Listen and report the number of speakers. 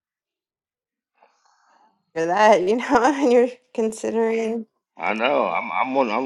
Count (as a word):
two